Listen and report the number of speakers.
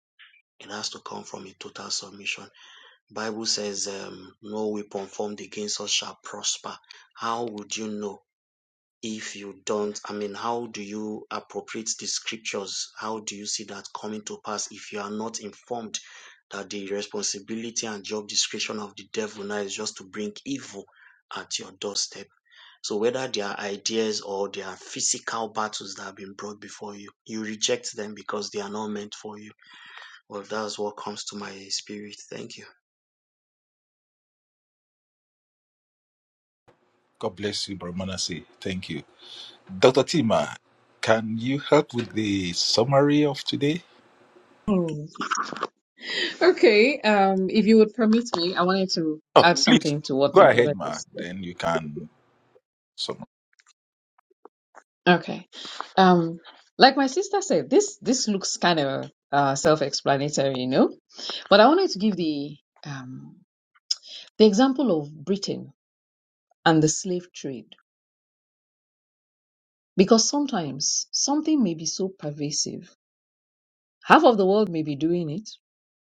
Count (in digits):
3